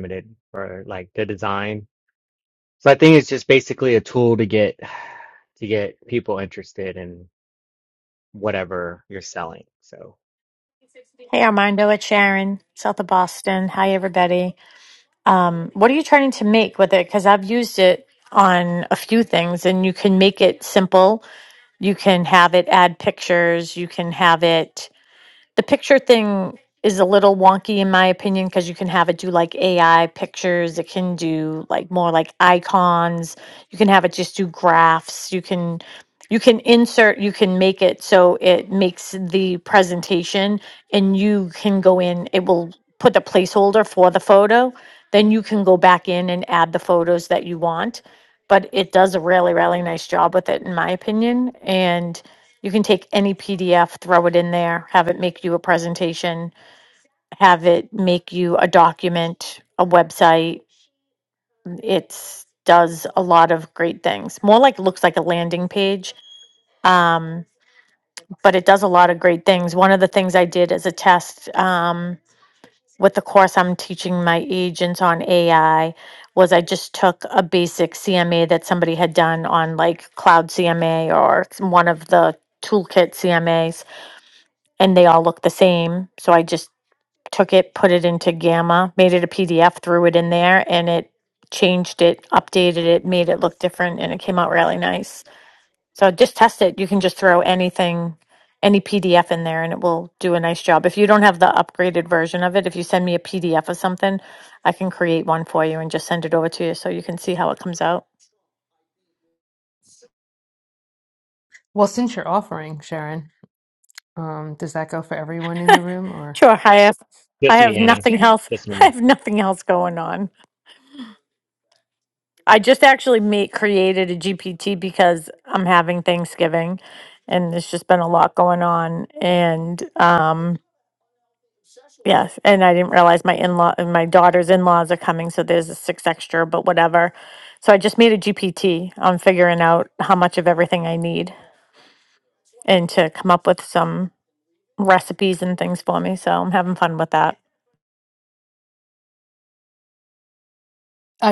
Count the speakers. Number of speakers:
3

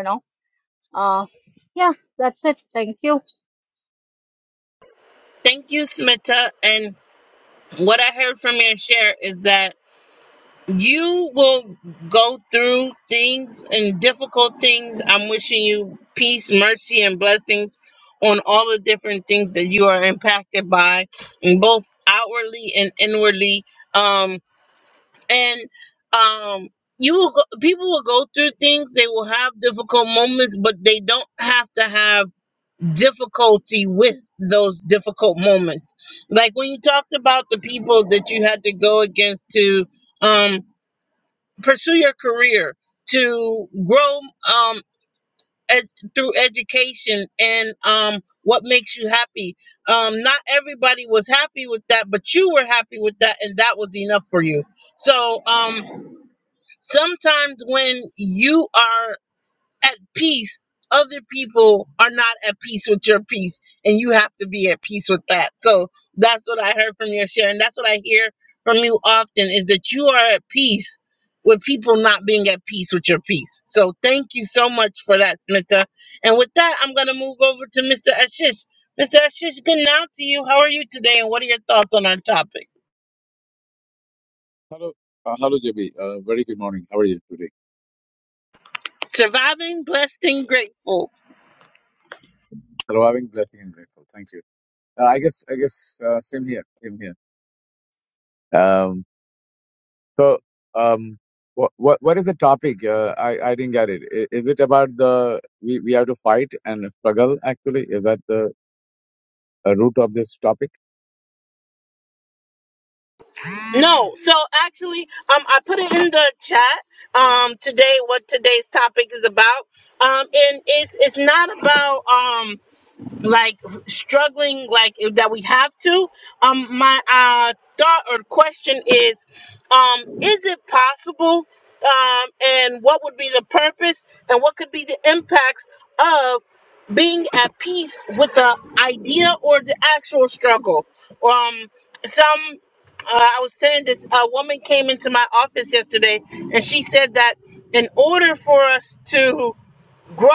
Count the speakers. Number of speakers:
3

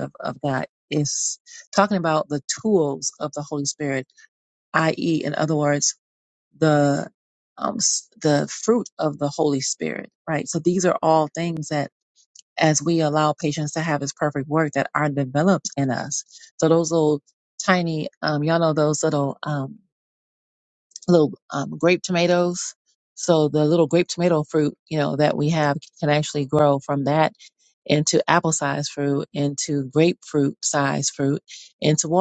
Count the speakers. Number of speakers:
1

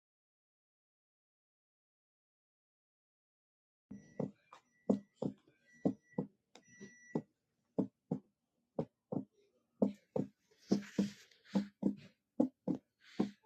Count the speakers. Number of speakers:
0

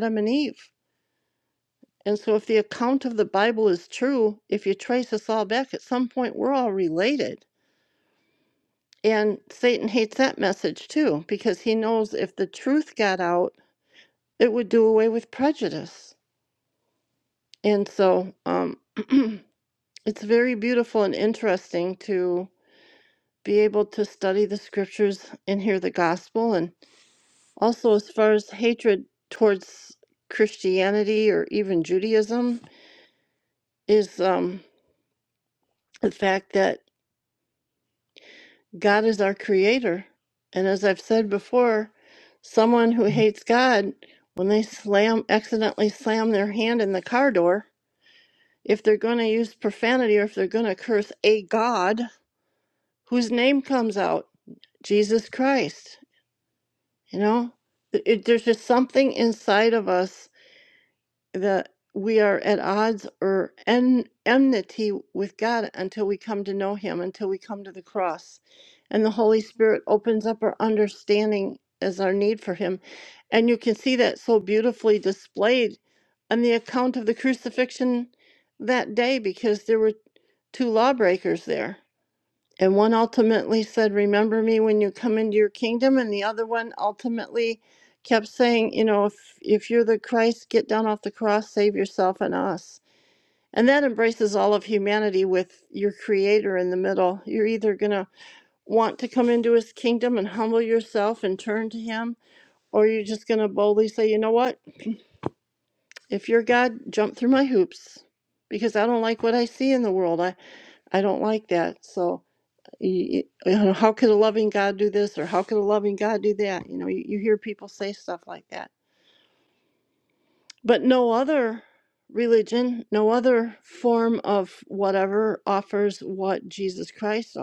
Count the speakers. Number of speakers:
1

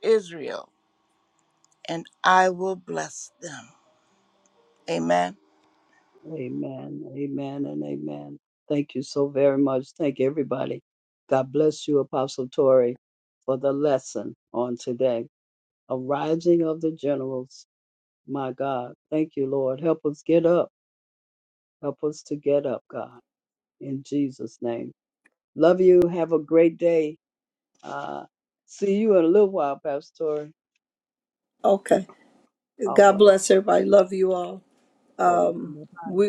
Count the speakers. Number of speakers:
3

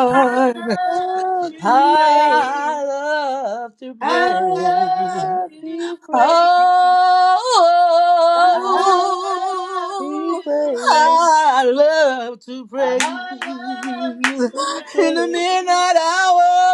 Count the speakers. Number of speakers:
3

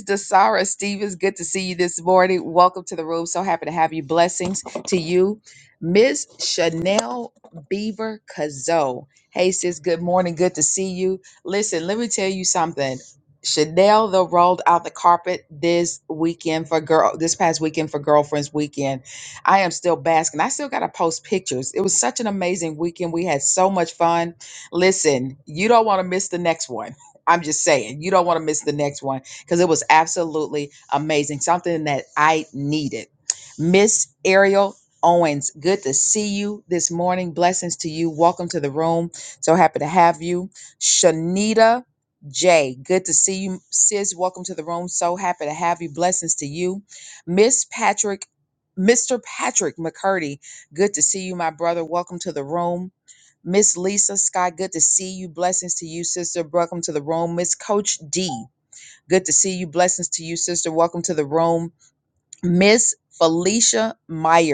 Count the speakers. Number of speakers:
1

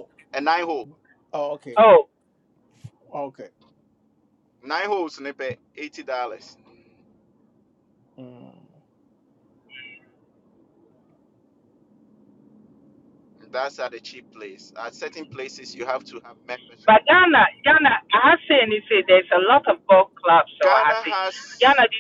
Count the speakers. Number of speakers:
3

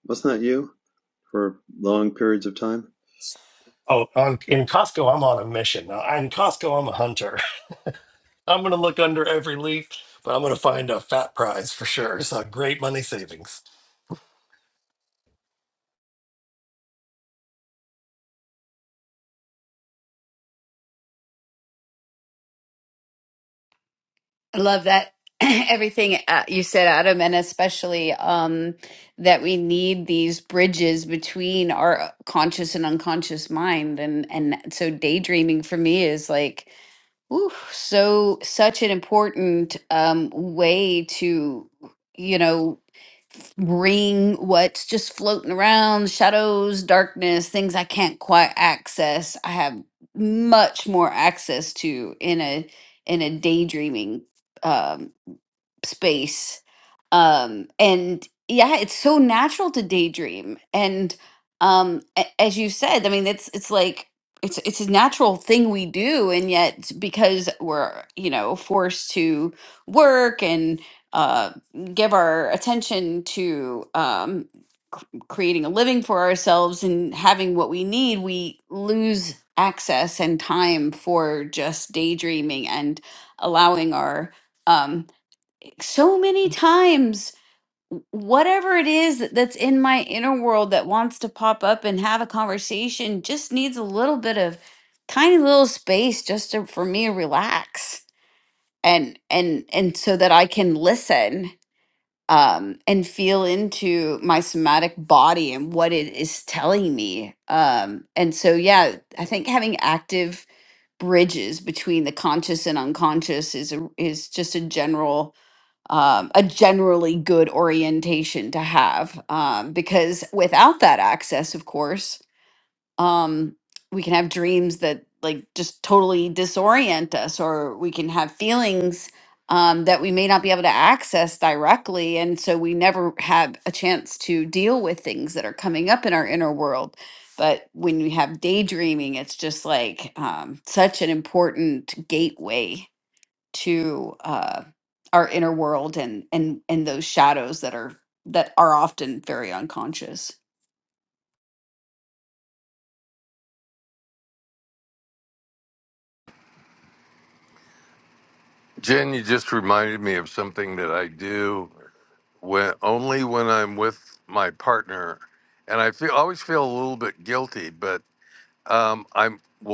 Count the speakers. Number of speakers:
4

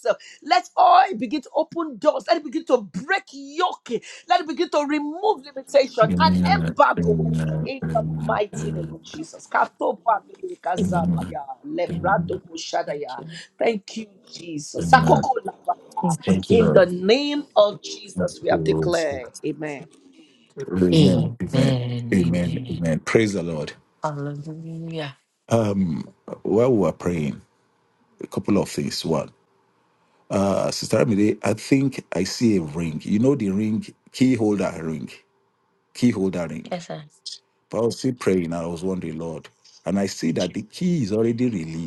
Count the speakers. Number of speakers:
3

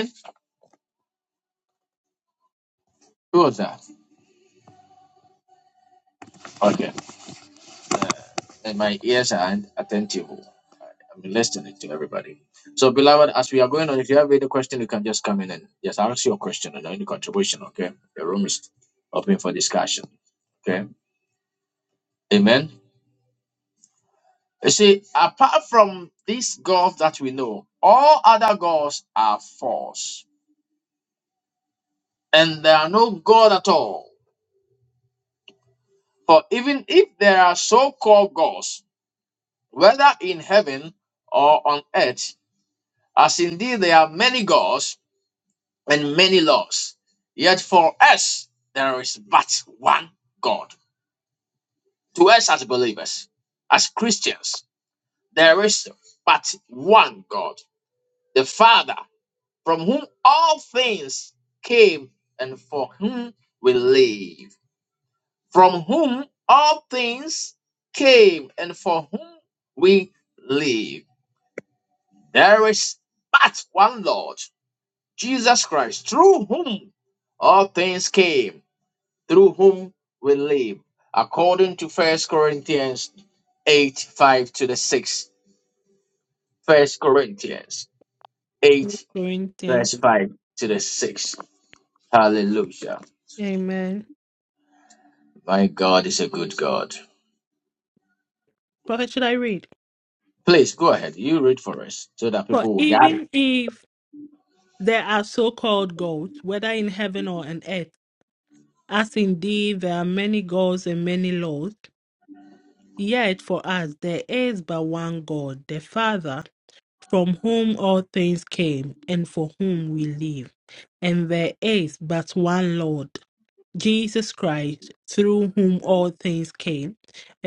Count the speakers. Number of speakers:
2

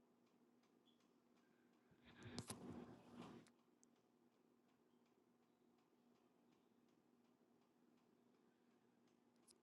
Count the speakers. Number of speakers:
0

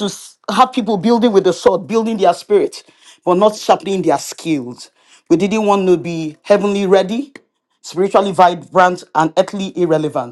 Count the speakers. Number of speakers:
1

